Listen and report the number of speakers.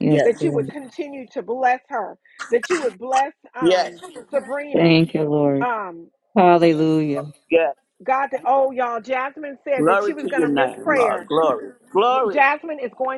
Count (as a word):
three